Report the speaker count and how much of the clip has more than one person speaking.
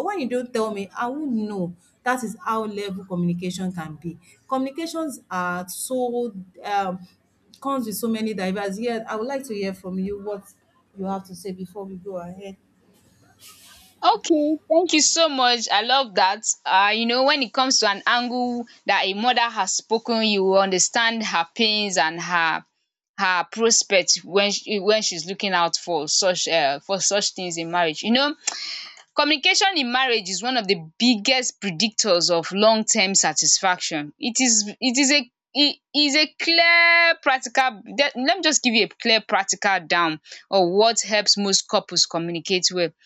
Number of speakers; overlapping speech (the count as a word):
two, no overlap